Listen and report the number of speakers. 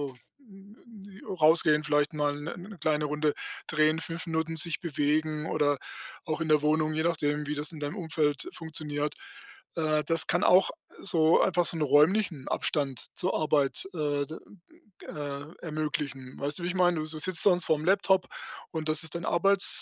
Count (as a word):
one